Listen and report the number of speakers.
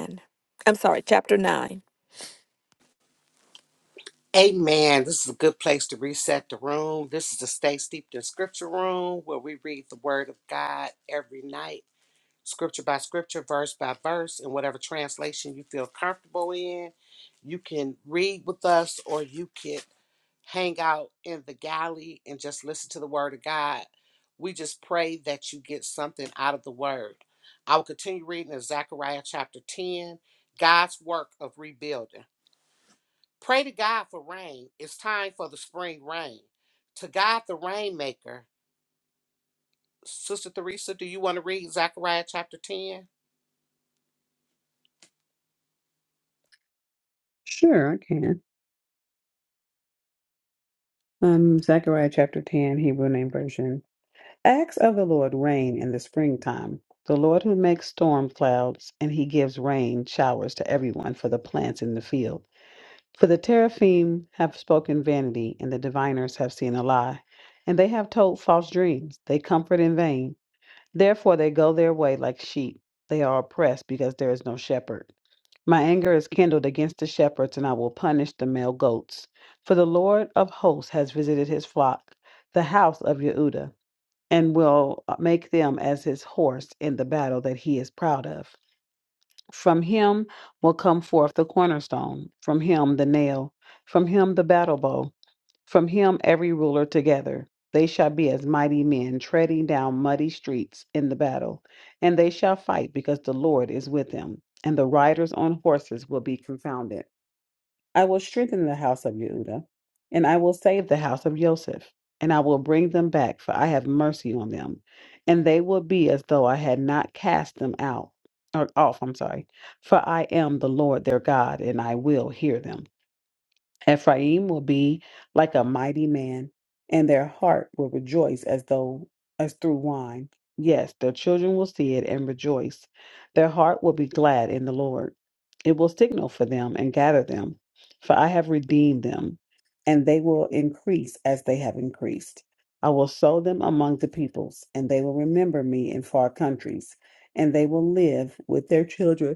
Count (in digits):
3